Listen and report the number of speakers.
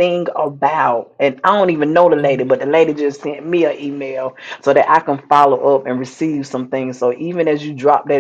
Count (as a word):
one